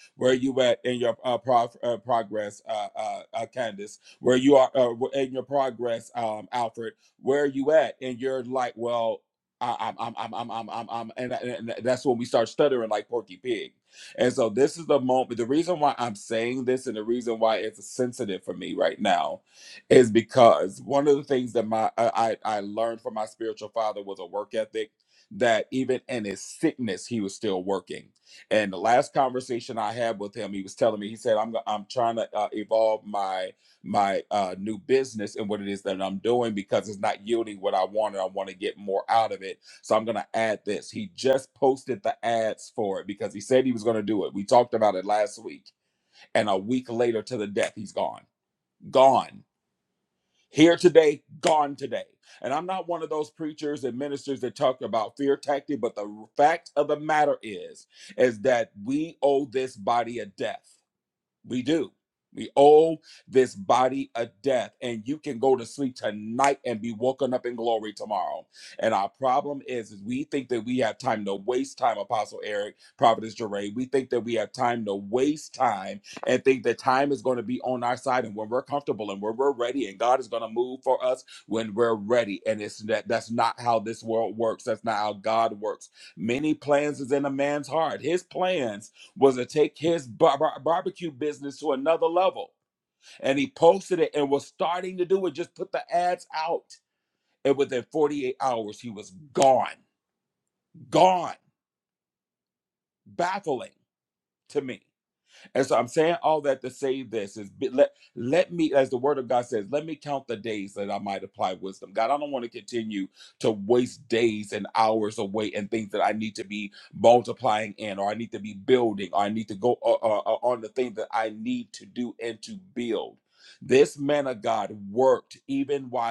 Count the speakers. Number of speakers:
one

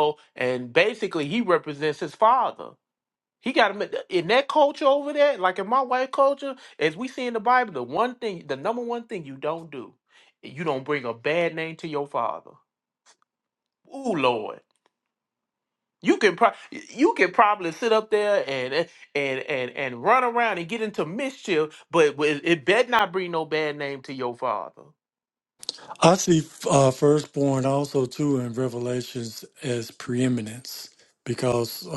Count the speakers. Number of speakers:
two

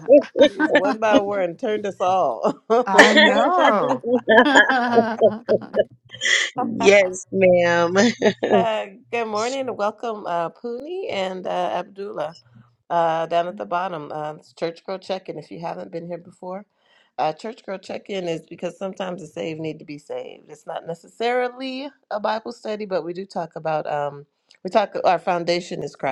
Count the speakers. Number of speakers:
three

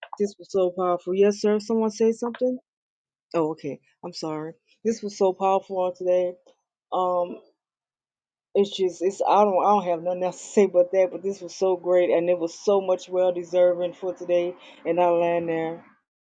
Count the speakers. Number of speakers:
one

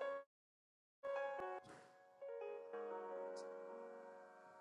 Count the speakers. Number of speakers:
zero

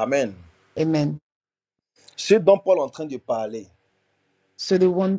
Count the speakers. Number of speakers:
two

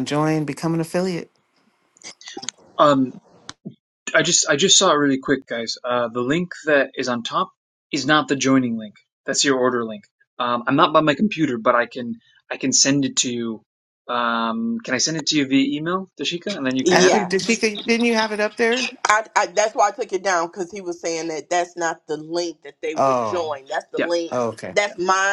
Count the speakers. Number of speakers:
three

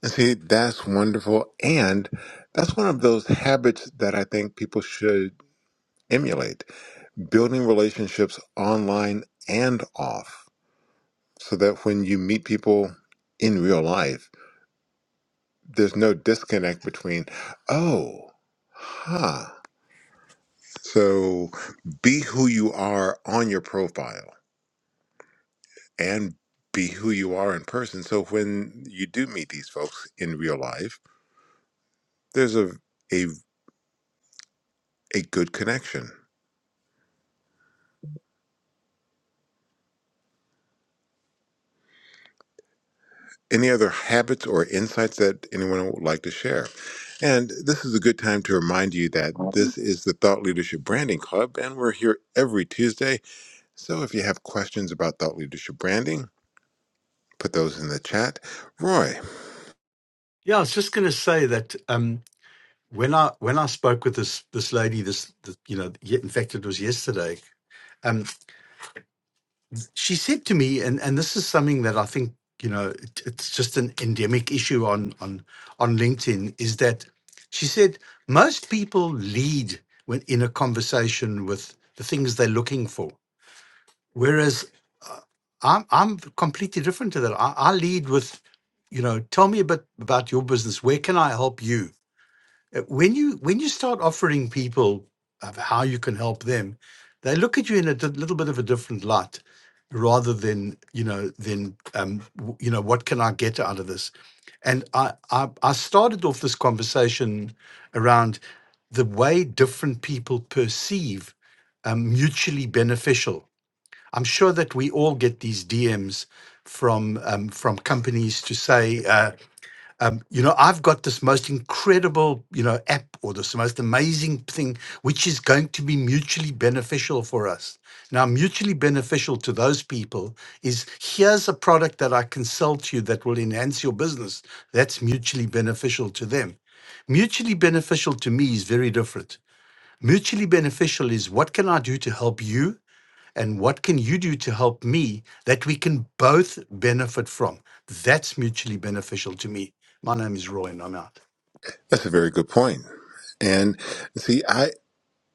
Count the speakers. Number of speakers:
two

